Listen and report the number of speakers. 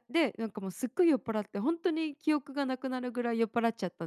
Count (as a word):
one